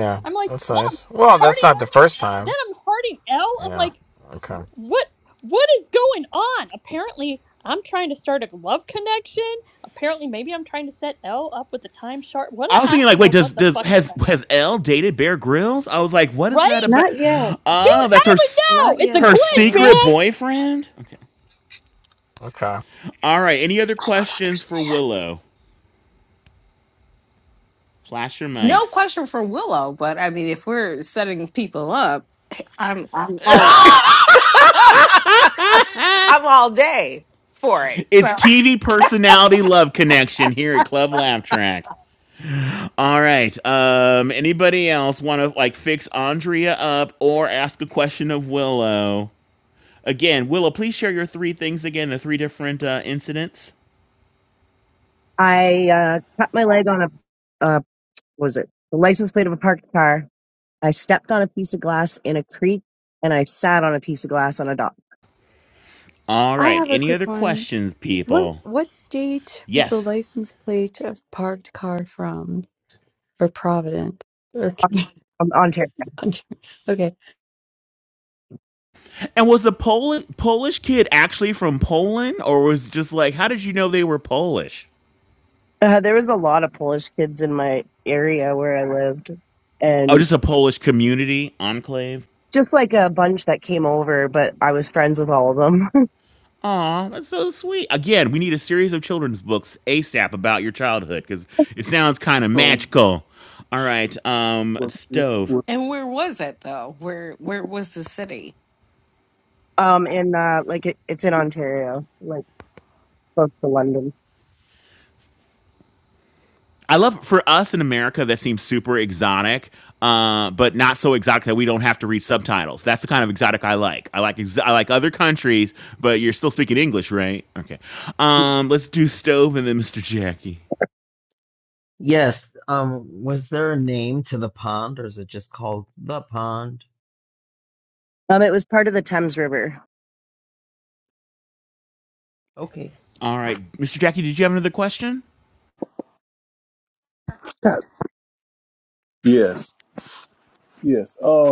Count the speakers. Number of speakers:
eight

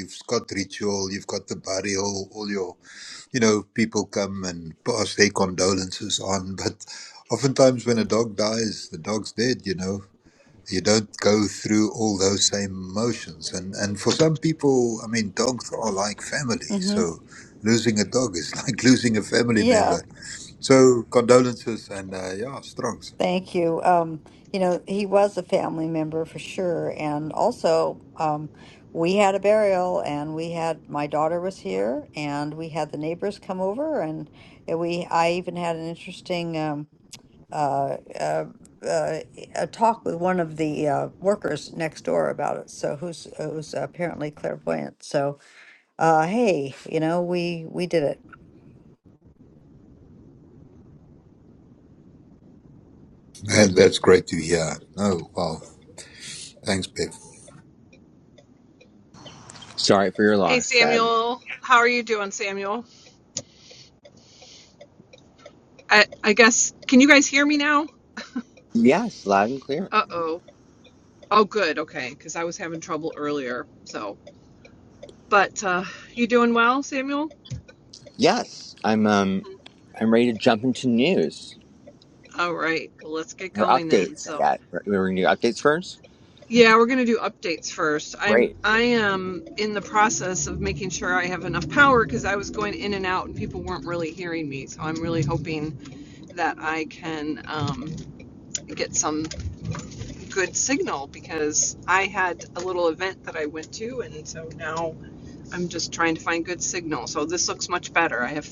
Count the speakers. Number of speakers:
four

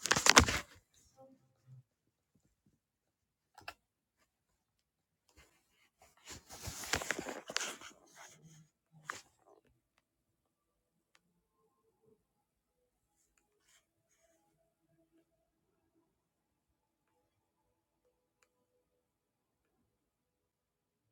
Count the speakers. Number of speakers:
zero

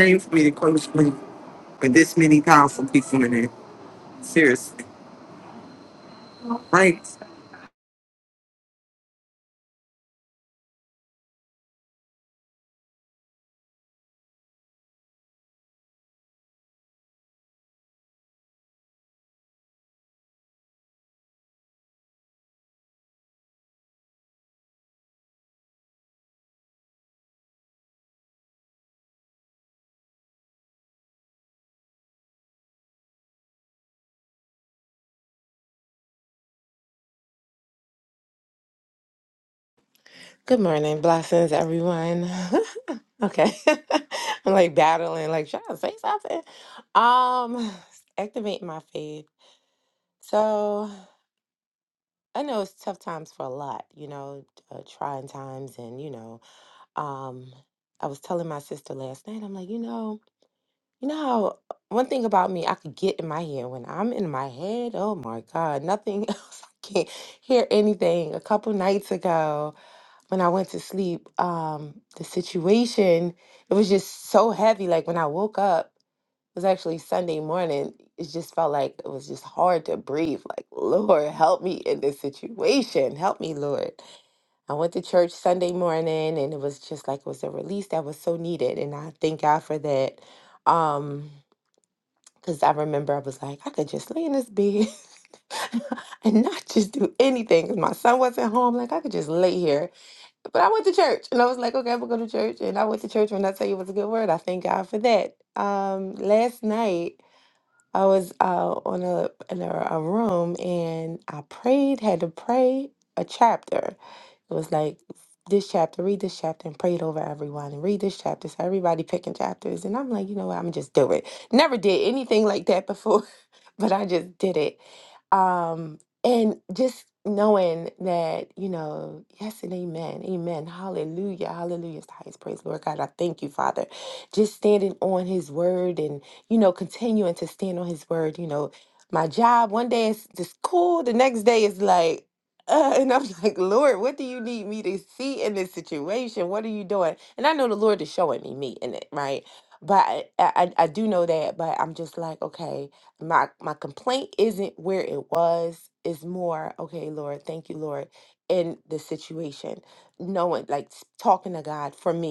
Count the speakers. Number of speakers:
two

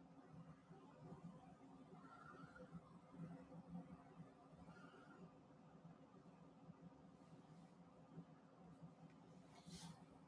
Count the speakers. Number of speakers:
zero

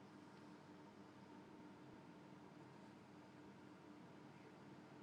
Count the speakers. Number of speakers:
zero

